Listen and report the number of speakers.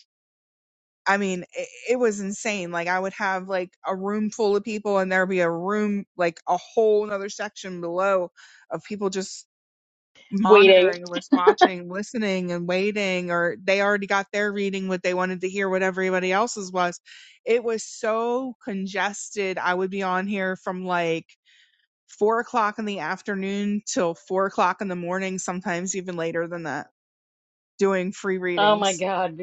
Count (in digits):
2